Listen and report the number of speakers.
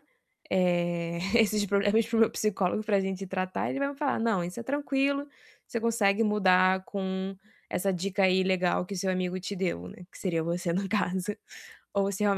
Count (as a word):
one